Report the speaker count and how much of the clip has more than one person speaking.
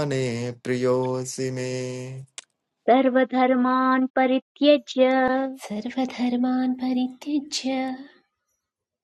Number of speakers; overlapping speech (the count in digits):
3, no overlap